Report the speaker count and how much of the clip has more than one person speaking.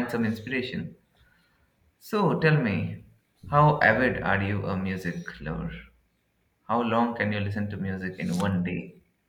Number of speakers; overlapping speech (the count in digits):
1, no overlap